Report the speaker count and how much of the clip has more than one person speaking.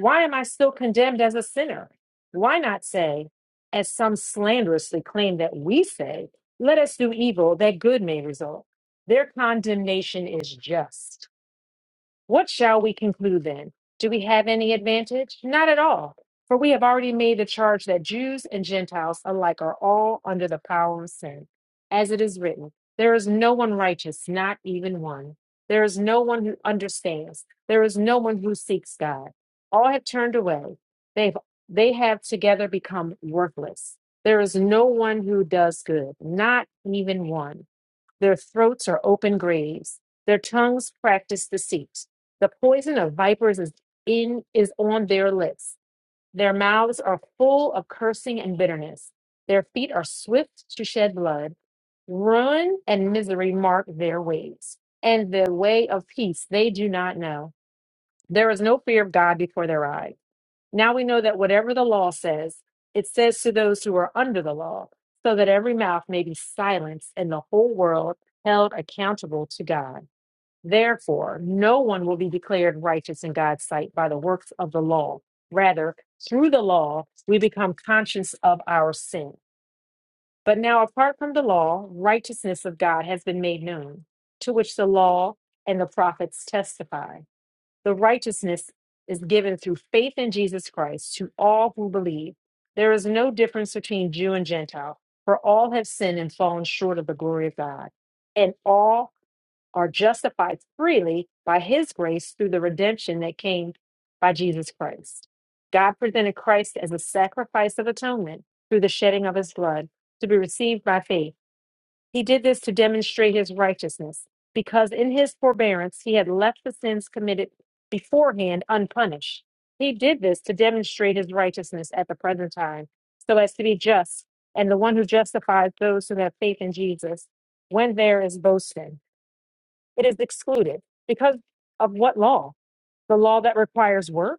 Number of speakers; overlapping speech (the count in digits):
1, no overlap